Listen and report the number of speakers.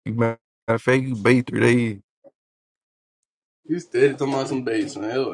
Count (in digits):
2